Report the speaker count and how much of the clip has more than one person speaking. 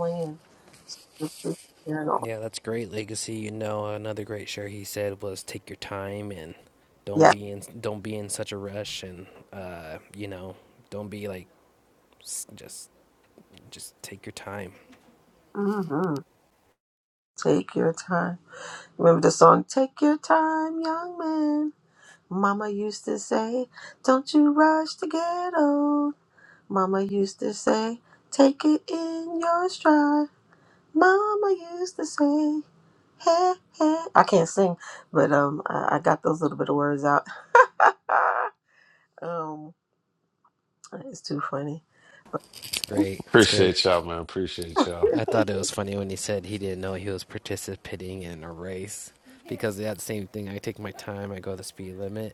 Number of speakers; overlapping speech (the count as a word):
three, about 2%